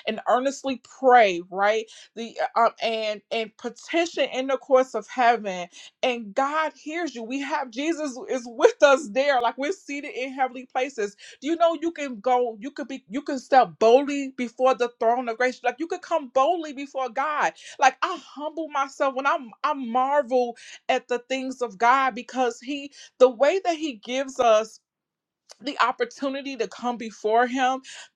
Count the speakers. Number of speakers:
one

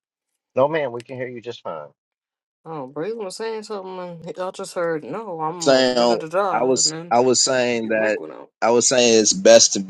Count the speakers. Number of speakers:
three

